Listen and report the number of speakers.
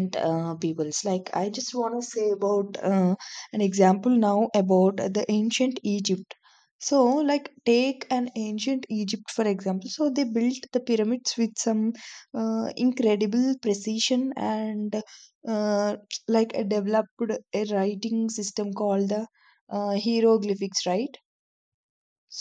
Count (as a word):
one